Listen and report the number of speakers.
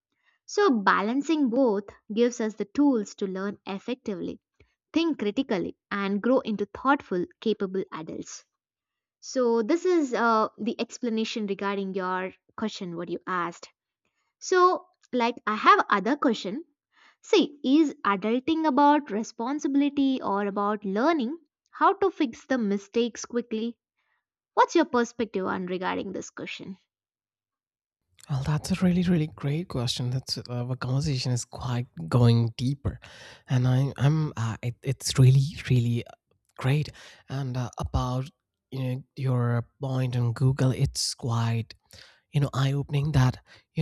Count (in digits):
2